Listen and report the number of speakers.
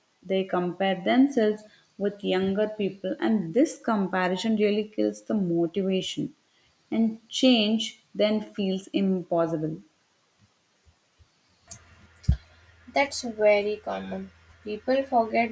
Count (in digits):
2